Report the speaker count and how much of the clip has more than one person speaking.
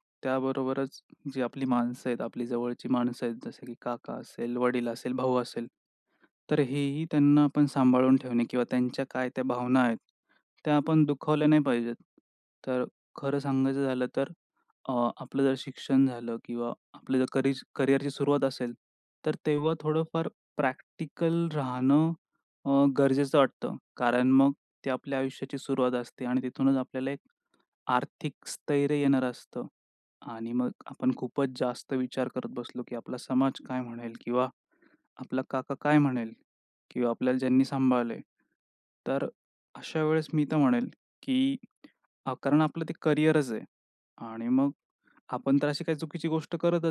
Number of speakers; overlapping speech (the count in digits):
1, no overlap